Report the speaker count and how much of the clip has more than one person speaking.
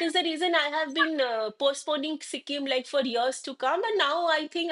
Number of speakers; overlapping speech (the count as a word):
one, no overlap